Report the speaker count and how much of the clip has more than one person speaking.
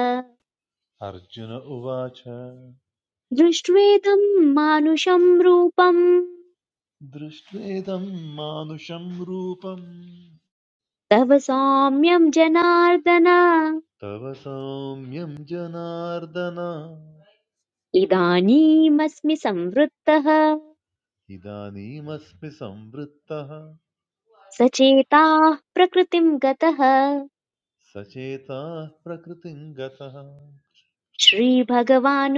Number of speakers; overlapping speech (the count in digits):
2, no overlap